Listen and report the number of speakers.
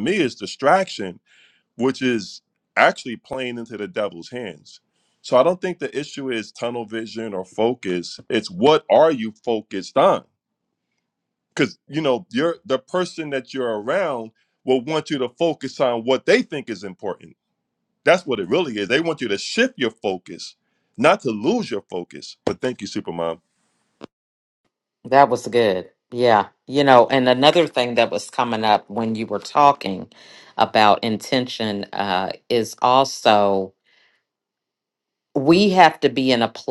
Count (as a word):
two